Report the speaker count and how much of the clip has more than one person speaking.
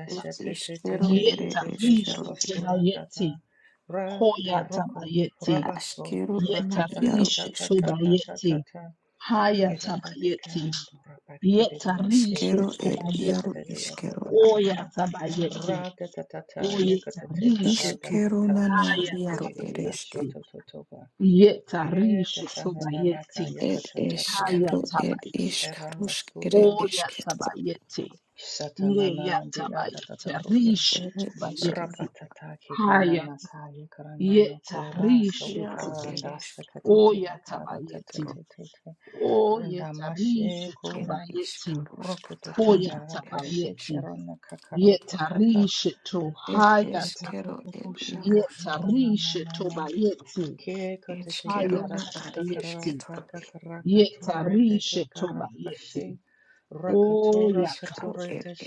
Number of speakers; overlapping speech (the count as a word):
three, about 70%